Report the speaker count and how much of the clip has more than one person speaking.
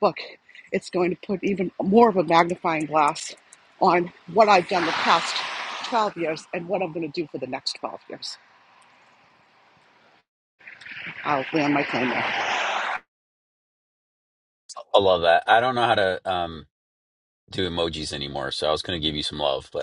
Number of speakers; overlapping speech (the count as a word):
two, no overlap